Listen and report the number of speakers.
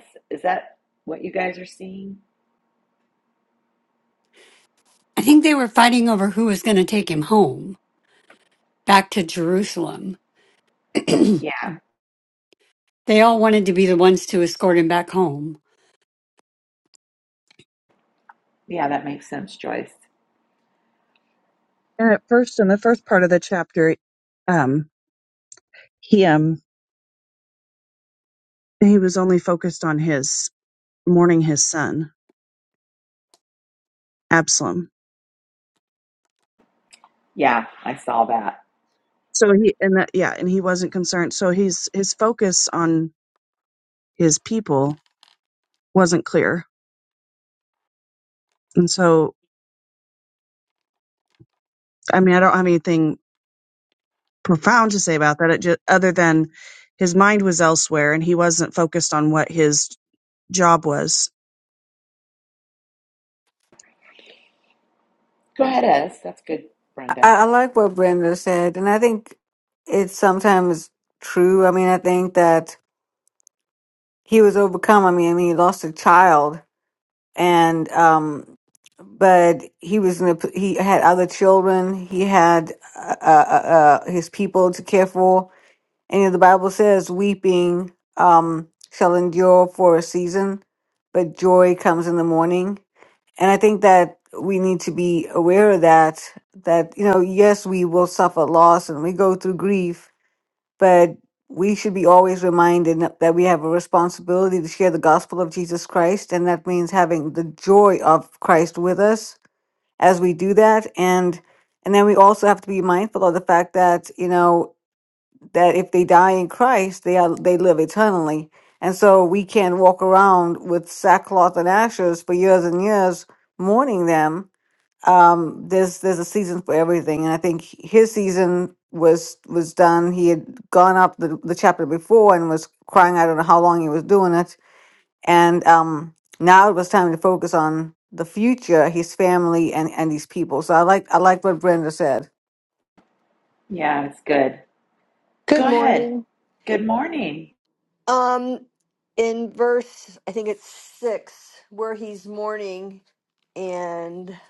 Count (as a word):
five